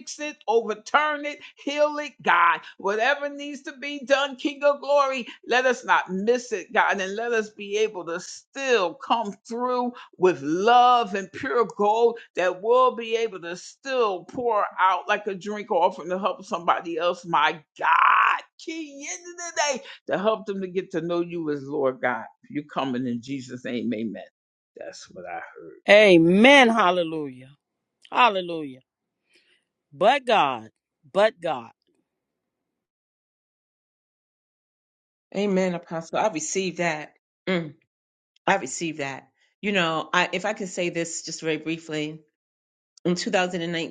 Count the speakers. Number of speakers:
three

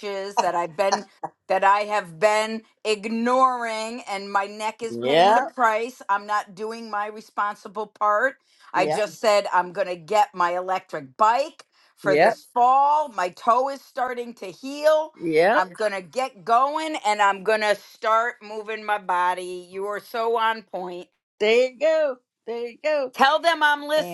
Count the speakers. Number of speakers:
two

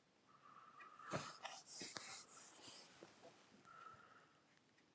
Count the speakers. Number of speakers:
zero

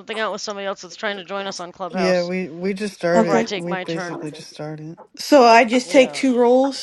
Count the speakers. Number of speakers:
three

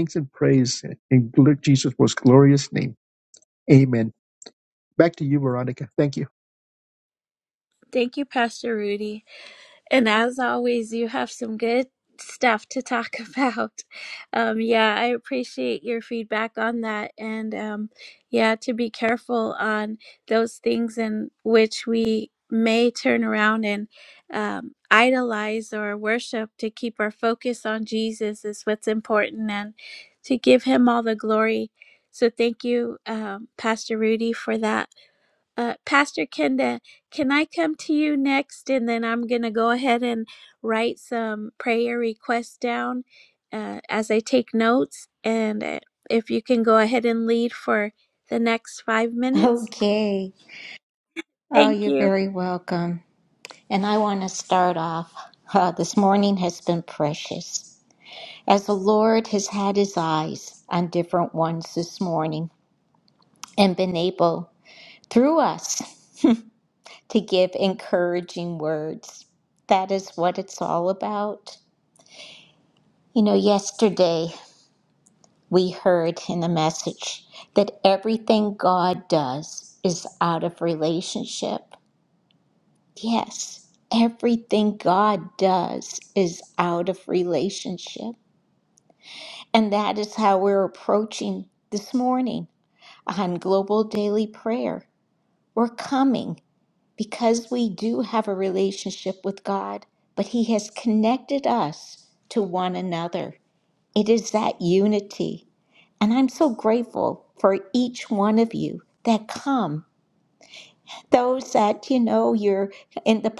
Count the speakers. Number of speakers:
three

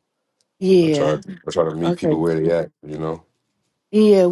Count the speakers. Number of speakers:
two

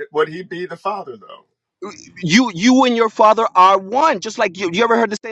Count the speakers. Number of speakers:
two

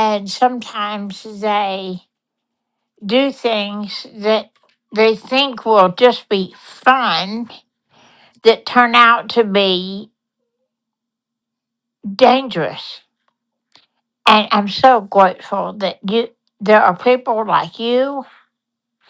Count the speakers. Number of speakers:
one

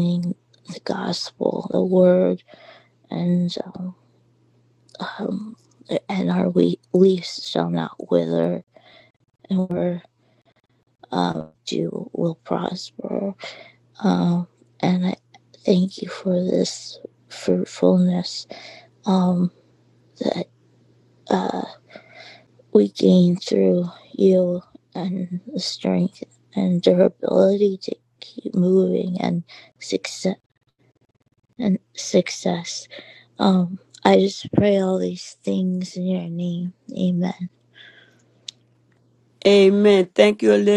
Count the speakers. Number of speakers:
two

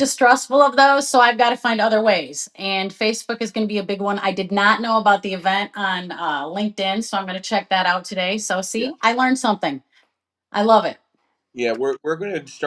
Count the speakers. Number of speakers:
two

